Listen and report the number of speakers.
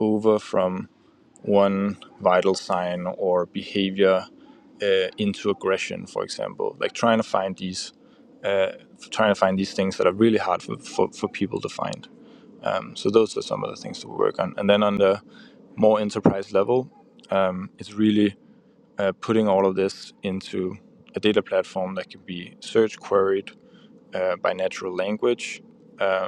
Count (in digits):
1